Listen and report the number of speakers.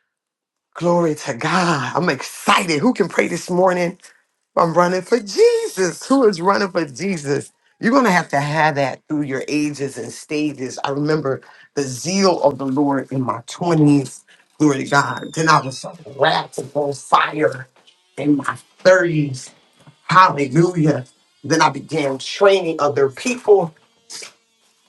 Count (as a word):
one